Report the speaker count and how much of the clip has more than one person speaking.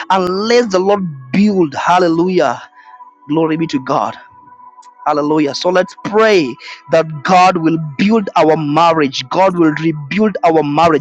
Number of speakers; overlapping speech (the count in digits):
1, no overlap